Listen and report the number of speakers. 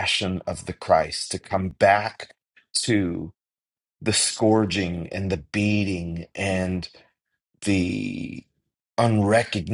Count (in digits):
1